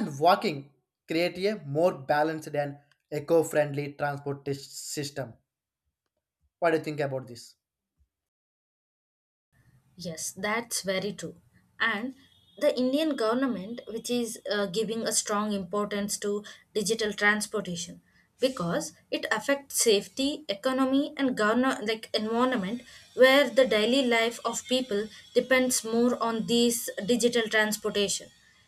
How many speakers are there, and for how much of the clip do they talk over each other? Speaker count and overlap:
two, no overlap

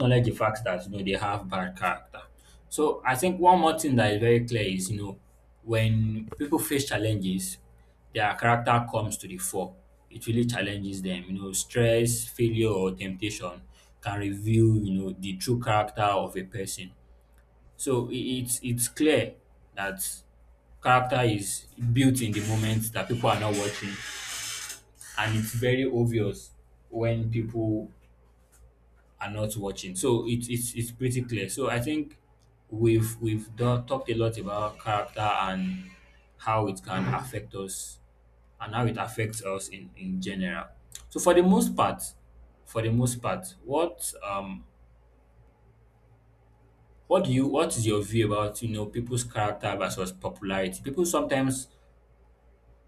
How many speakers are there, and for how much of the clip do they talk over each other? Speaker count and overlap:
one, no overlap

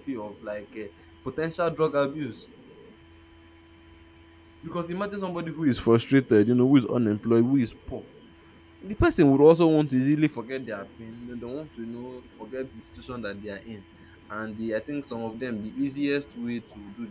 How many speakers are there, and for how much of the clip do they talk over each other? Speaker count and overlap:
one, no overlap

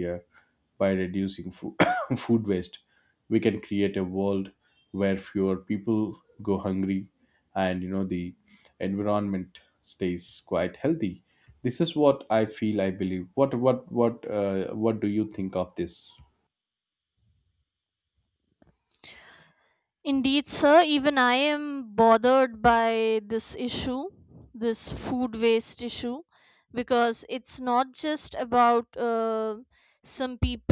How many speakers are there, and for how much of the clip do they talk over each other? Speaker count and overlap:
two, no overlap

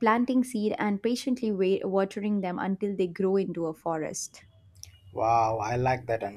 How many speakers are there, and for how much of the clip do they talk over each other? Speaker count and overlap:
two, no overlap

